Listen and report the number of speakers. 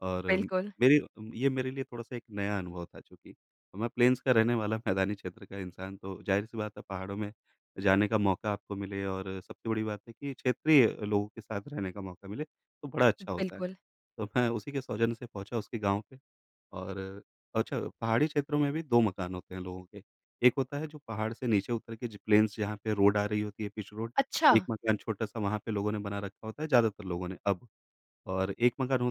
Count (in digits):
2